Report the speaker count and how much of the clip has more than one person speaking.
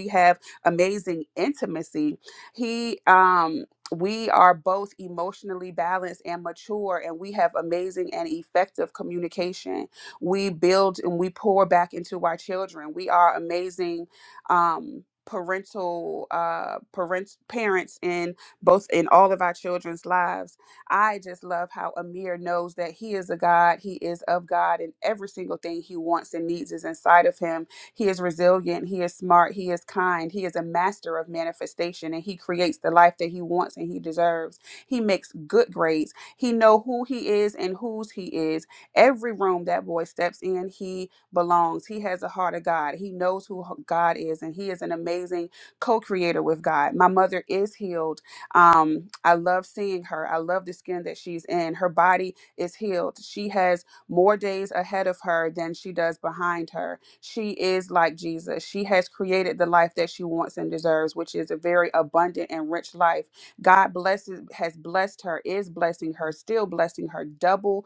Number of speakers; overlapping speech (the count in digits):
1, no overlap